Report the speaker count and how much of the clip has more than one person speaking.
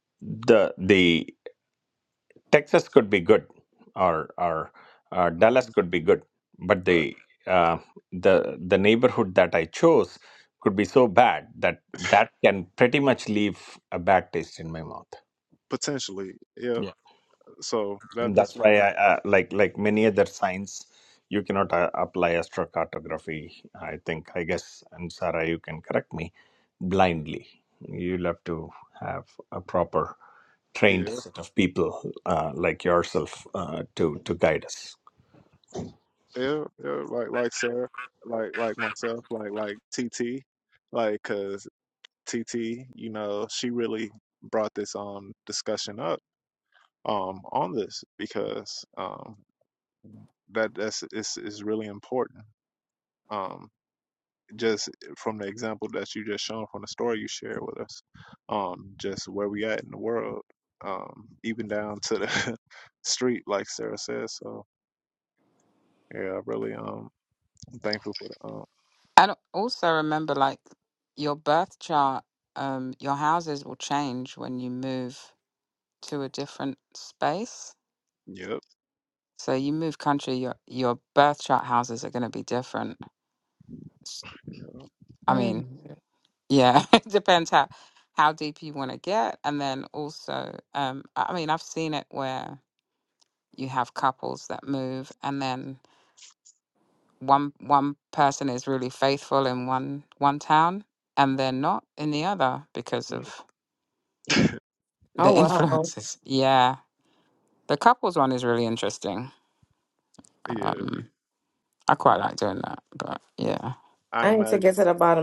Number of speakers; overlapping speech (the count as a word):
four, about 3%